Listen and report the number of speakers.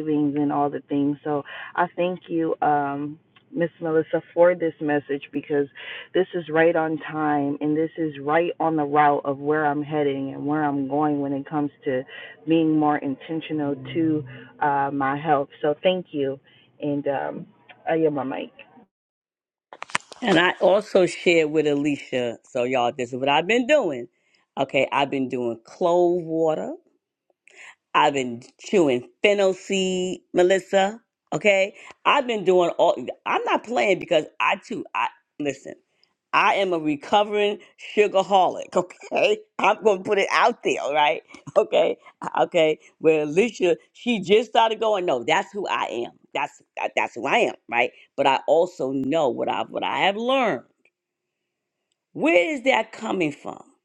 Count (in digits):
2